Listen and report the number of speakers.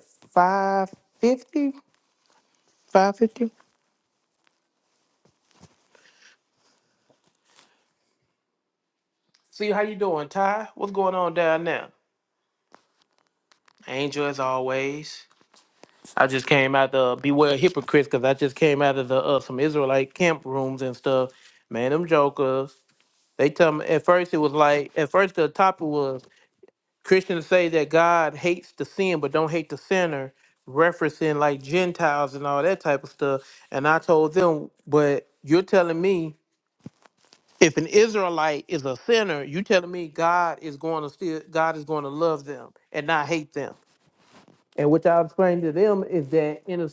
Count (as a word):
one